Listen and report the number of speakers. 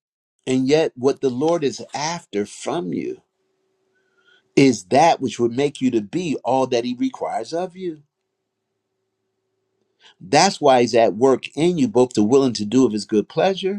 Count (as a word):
one